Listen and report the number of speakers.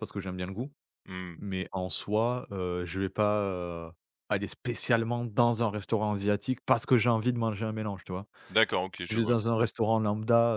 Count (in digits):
2